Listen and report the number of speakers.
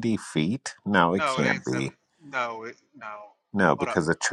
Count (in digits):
2